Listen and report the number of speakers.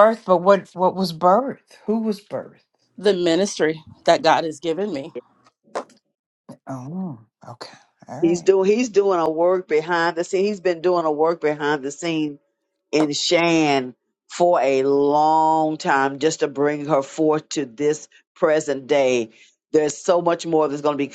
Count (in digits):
3